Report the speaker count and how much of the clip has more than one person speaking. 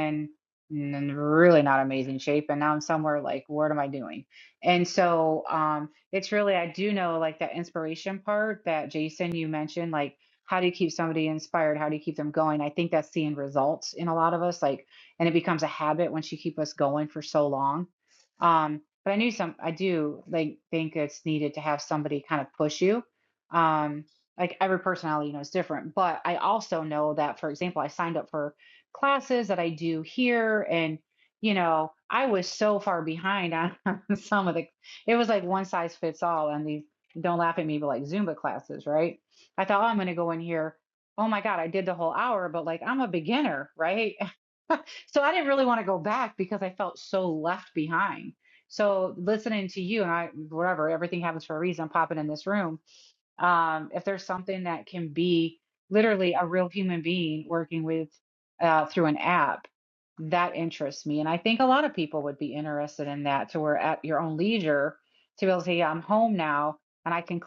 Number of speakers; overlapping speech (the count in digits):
1, no overlap